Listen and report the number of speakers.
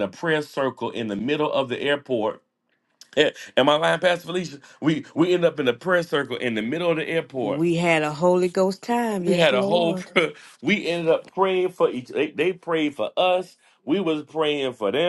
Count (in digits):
2